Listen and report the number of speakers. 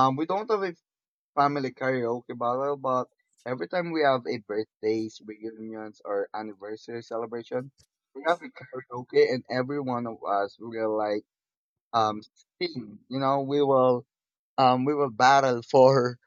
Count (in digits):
1